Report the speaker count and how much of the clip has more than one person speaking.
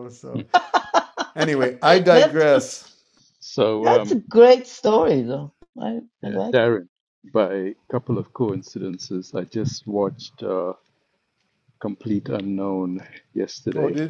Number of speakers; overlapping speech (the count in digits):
3, about 9%